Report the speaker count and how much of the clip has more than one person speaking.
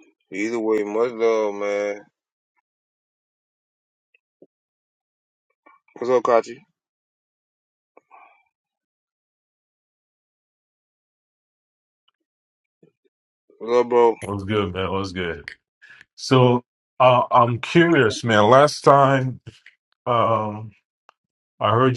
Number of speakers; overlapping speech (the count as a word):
two, no overlap